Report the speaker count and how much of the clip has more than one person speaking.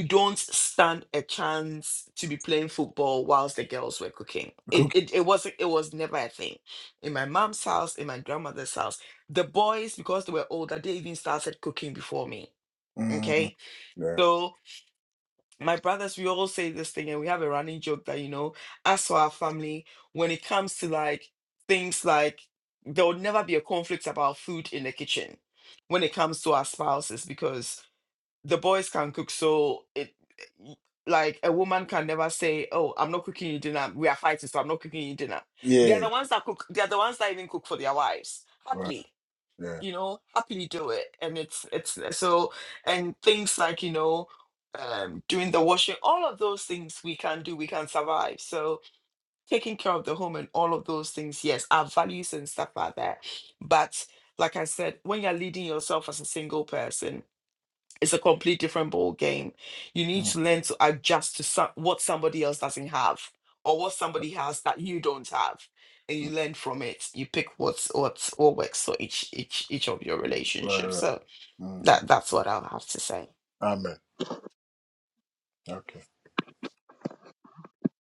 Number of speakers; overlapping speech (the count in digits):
2, about 2%